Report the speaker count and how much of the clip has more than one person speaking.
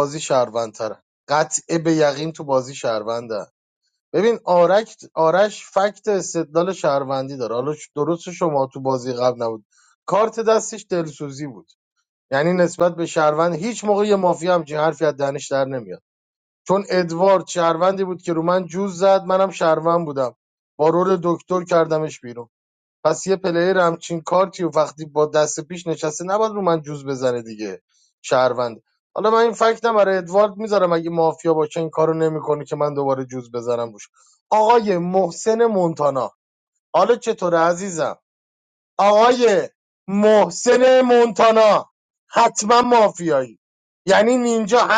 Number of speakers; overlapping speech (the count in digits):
1, no overlap